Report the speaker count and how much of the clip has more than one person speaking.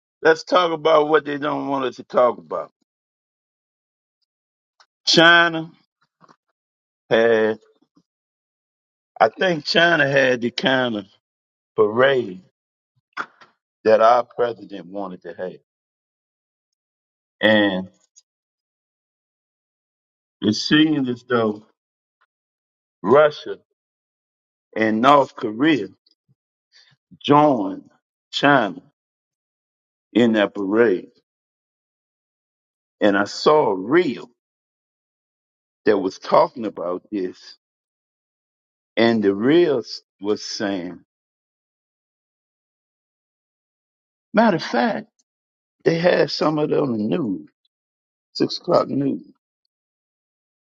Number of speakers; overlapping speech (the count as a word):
one, no overlap